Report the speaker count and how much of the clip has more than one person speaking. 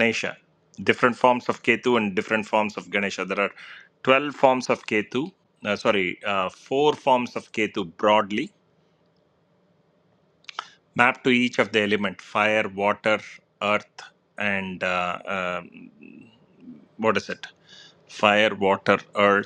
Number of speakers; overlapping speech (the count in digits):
1, no overlap